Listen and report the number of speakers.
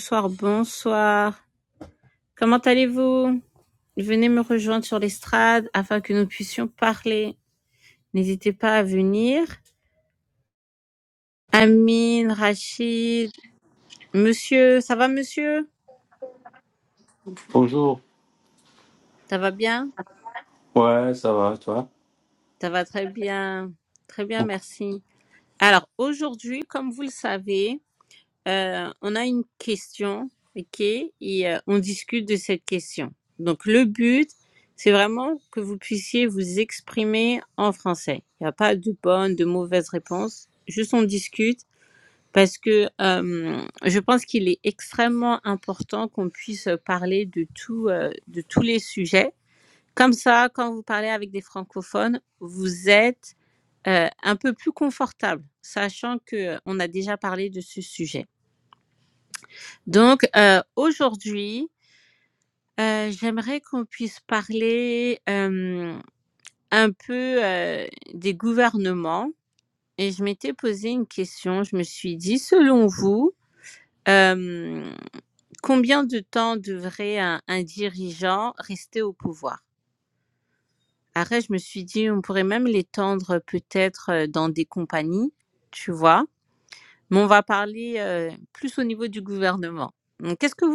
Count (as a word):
two